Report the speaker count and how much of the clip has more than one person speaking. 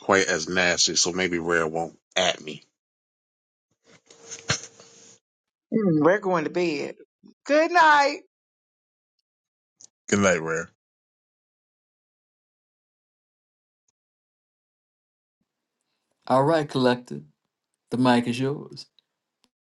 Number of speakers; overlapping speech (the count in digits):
3, no overlap